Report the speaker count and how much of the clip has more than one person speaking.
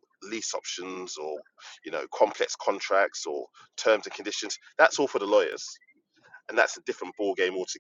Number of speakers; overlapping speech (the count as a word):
one, no overlap